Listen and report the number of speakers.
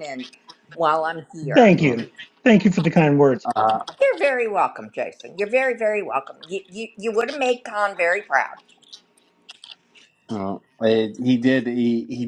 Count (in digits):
3